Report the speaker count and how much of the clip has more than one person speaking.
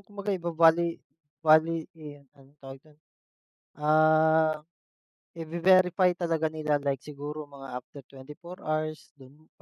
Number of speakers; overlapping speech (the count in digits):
1, no overlap